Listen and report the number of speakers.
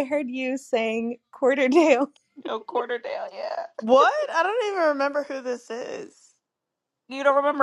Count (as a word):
three